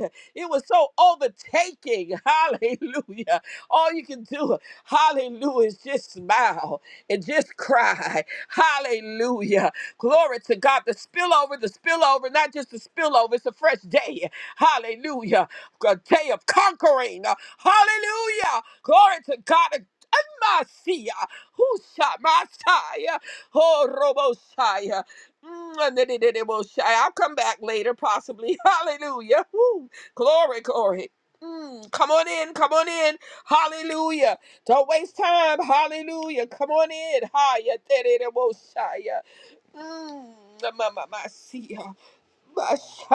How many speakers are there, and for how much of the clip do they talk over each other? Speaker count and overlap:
1, no overlap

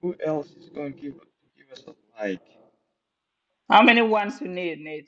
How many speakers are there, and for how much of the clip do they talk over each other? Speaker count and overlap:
2, no overlap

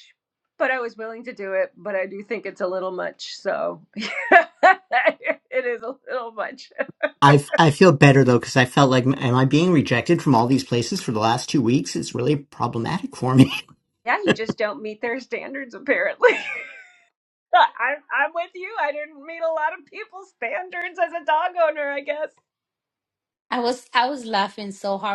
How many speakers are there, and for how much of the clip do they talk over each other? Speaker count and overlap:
3, under 1%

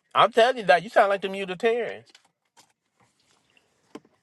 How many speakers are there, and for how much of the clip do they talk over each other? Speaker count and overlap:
1, no overlap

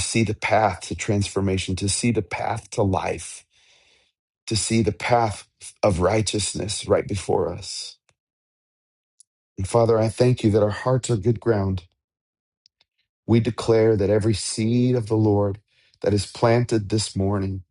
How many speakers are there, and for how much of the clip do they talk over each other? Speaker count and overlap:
1, no overlap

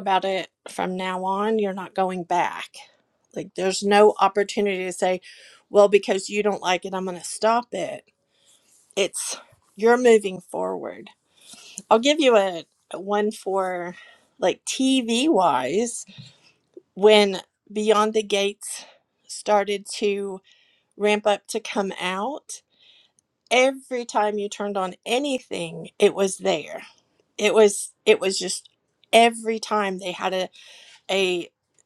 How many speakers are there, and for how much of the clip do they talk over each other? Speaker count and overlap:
1, no overlap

